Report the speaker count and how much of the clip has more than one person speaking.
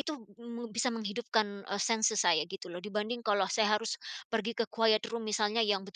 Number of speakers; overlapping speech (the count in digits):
1, no overlap